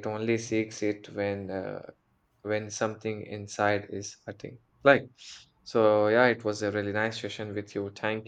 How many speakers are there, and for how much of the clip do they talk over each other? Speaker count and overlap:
1, no overlap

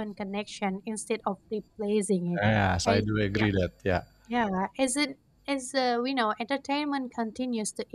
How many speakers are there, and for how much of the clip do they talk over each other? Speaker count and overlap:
2, about 8%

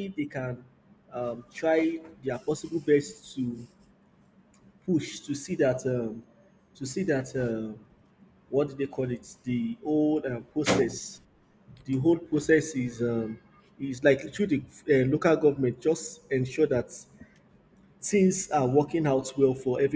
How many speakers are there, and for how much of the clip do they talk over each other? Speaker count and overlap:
1, no overlap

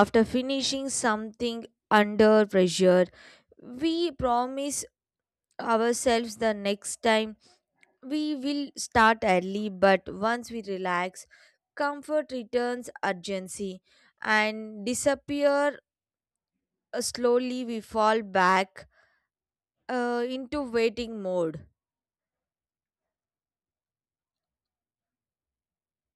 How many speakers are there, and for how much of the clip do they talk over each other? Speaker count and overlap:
1, no overlap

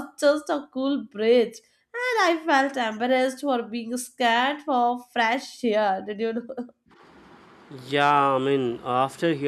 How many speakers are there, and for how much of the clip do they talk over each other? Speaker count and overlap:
2, no overlap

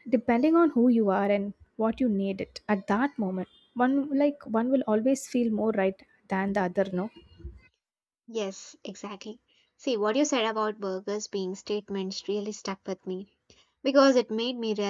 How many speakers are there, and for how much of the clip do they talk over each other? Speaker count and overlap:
2, no overlap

